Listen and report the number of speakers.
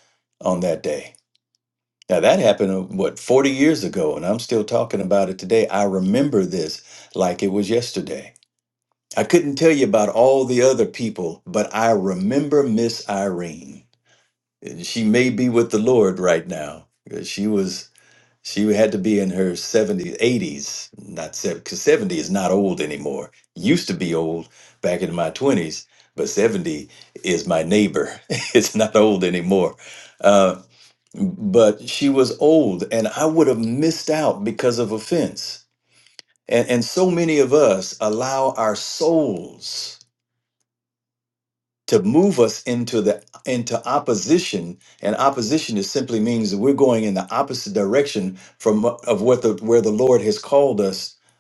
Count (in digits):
1